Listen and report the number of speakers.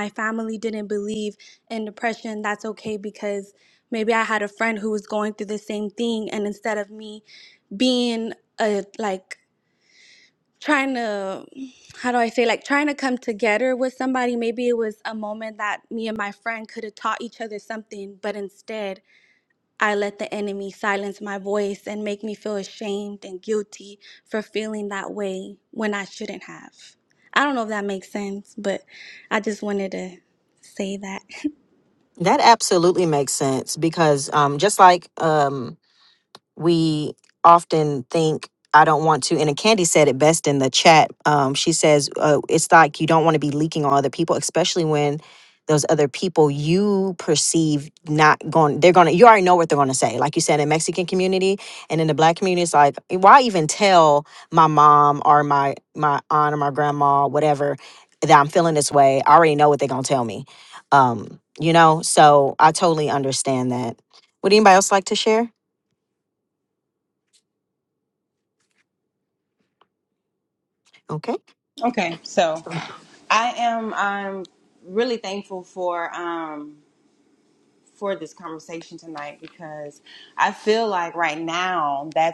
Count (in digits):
3